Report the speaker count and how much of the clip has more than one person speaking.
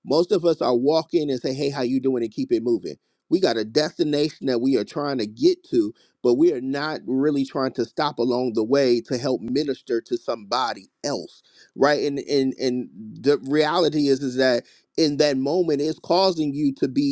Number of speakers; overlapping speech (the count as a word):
one, no overlap